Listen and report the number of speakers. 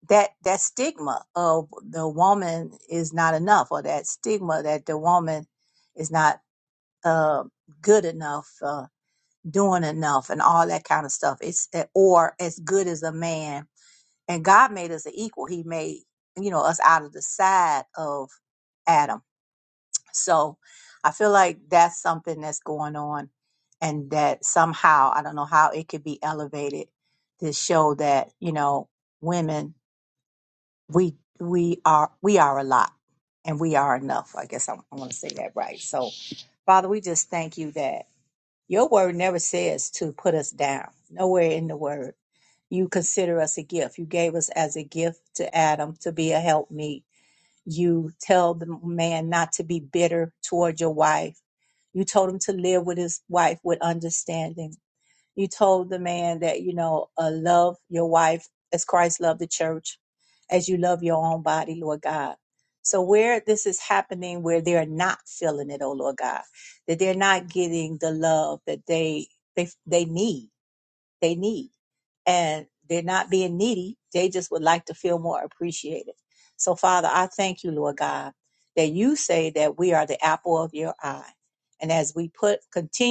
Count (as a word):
one